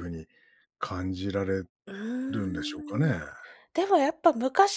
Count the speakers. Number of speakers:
two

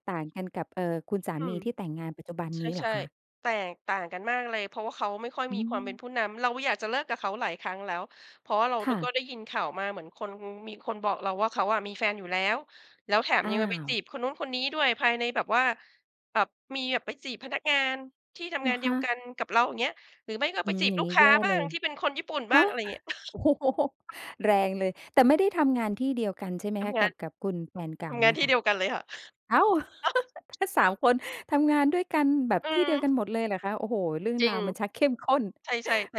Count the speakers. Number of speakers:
two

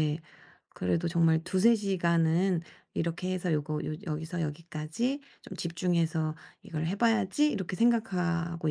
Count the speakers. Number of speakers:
one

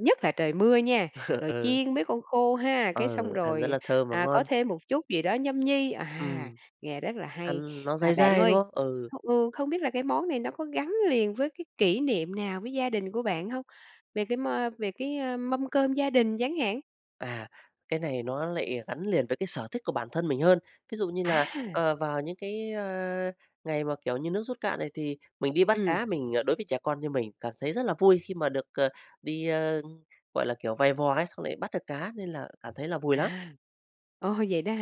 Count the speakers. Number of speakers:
two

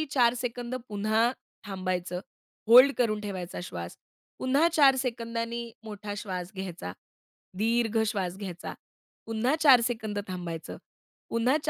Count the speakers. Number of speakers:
one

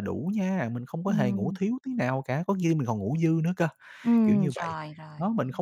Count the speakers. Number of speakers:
two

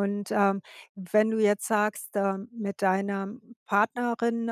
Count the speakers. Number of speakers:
one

